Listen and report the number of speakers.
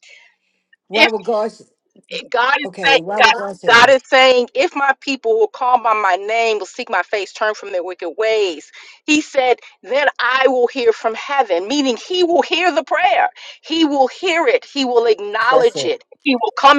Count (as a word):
two